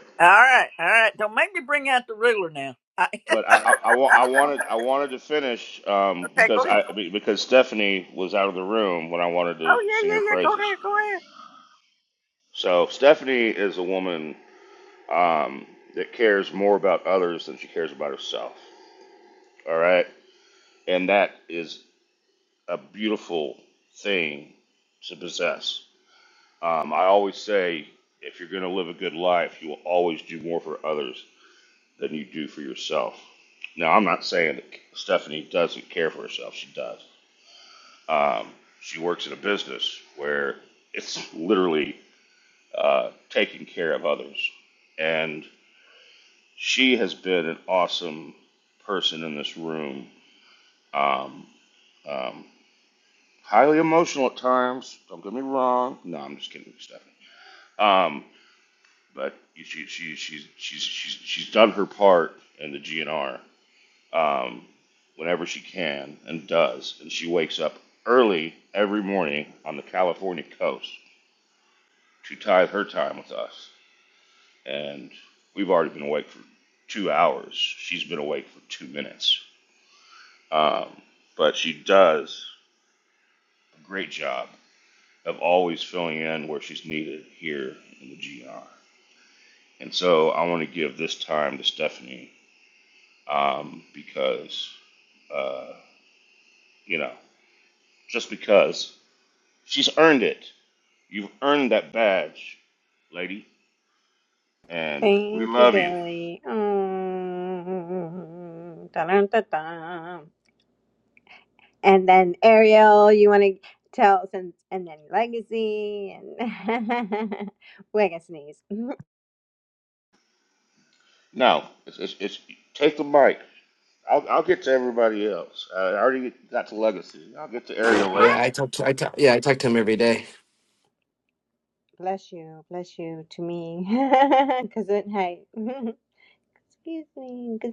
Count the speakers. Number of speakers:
4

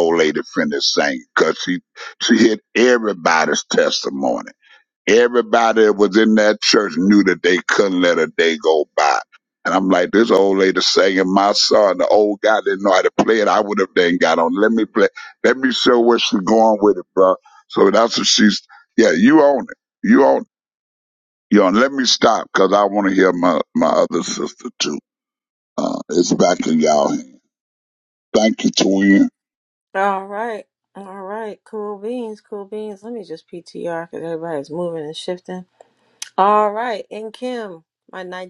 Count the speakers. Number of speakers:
2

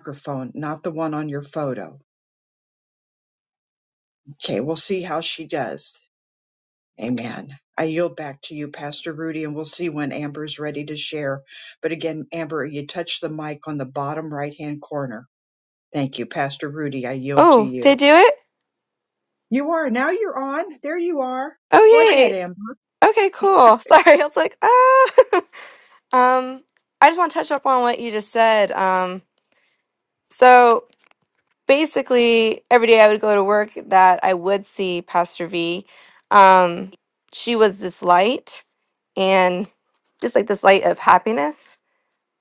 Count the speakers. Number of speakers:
2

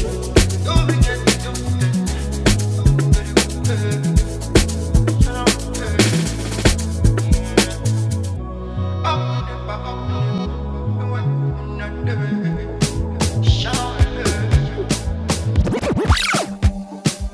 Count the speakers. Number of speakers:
0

